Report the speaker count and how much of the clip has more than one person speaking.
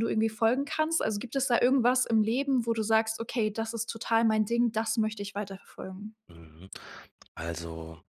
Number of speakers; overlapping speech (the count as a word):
two, no overlap